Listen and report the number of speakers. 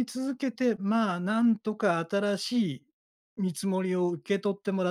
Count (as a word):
one